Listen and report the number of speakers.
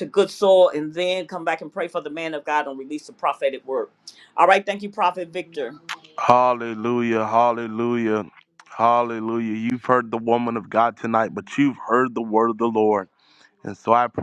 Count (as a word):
two